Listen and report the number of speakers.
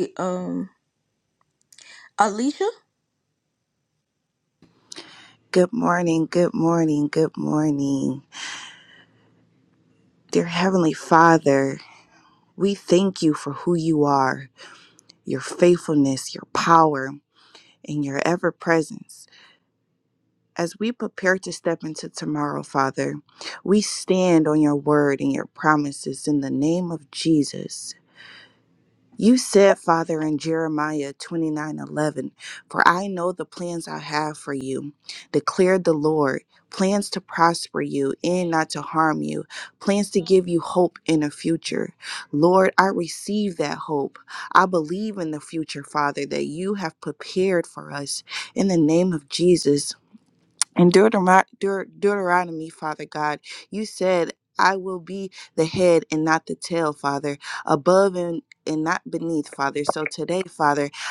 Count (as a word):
two